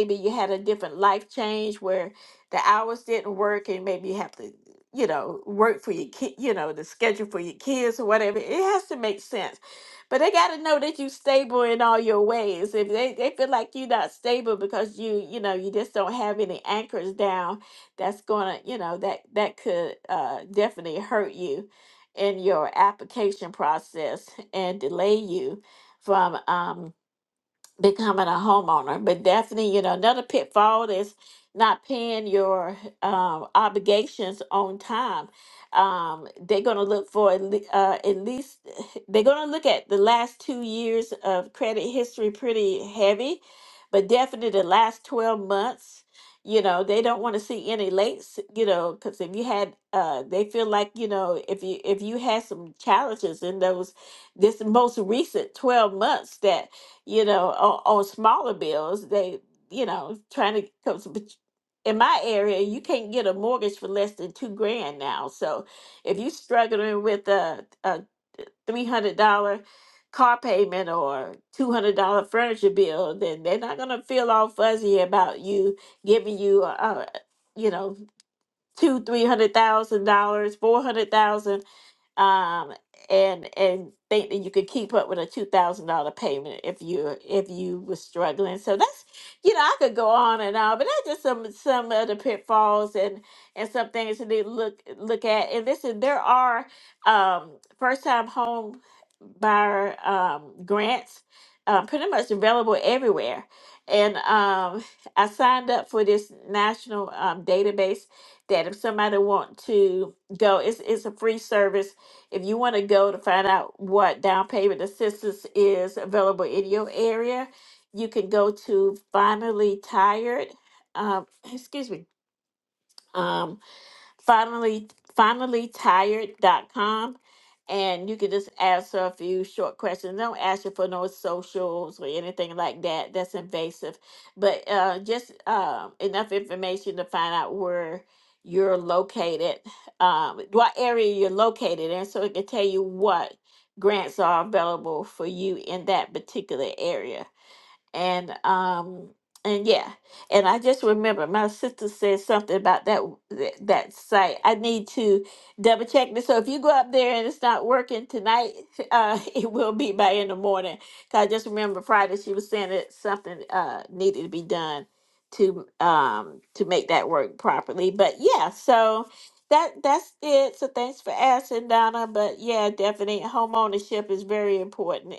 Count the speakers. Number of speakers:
one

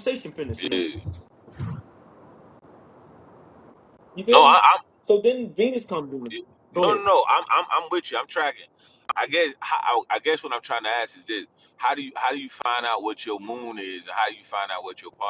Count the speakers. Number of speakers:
two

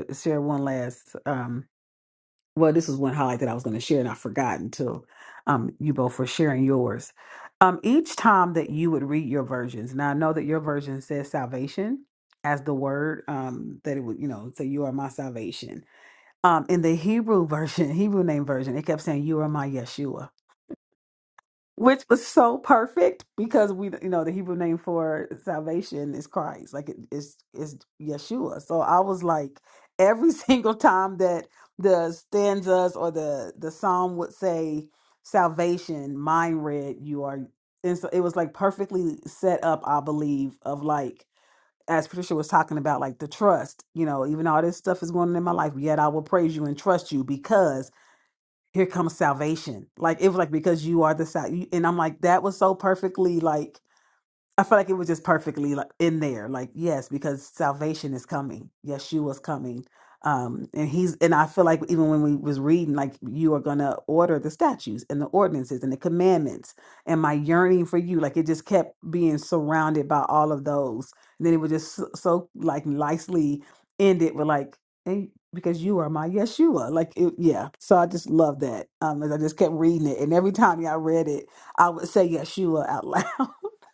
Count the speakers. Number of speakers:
one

